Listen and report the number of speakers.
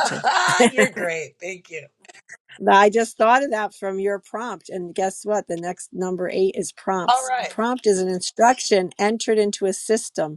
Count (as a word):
two